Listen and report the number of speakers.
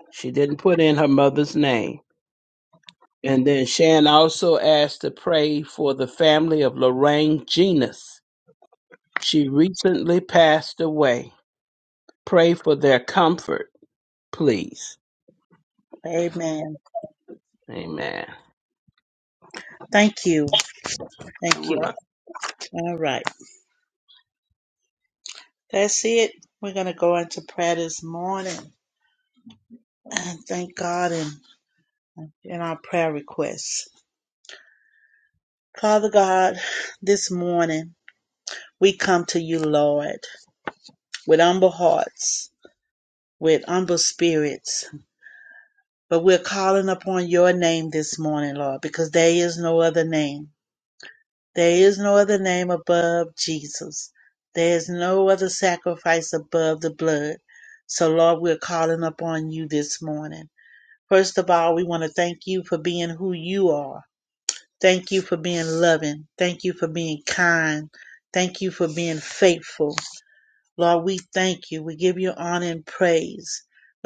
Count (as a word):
two